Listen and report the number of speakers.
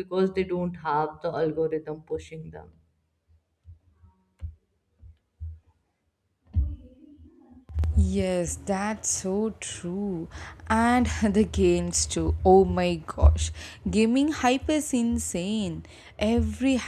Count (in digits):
2